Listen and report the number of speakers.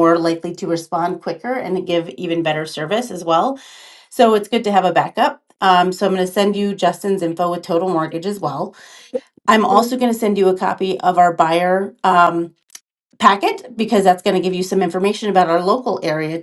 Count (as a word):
one